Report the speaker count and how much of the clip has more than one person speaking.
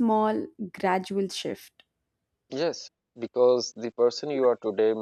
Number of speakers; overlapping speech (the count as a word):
two, no overlap